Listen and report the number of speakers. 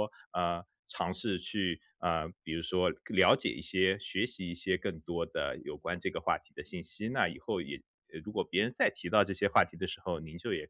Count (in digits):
1